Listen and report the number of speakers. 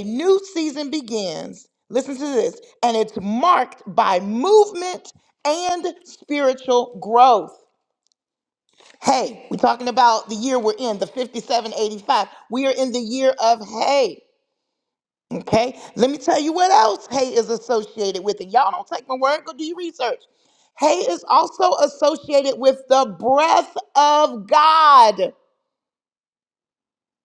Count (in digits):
1